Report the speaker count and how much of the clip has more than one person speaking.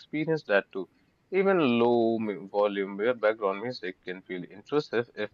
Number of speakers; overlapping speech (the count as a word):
one, no overlap